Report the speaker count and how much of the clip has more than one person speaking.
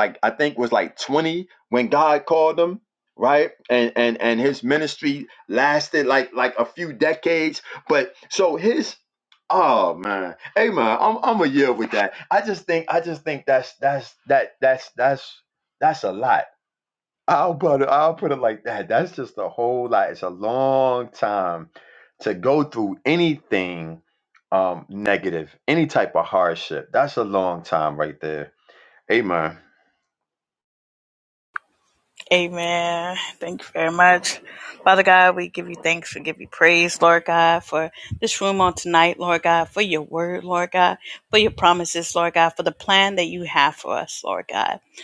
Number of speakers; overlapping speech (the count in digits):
2, no overlap